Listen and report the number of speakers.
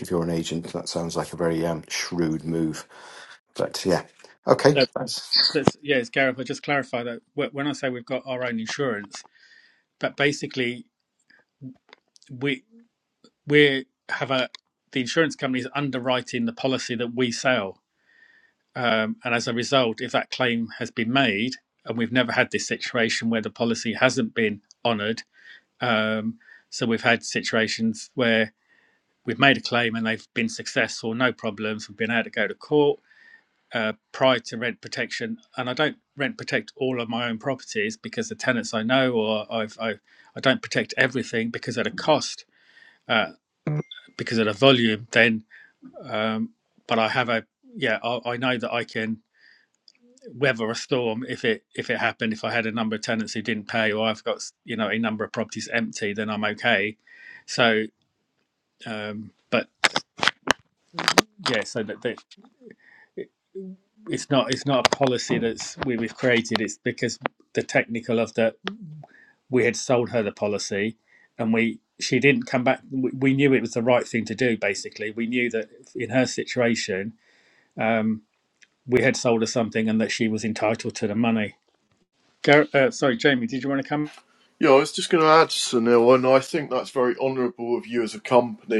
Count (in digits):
3